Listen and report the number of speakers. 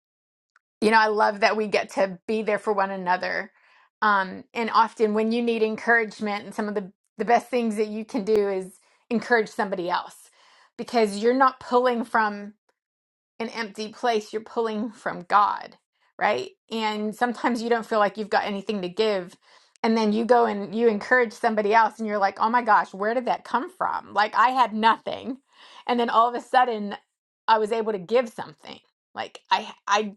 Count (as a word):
one